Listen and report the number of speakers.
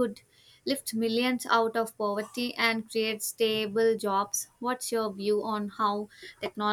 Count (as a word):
one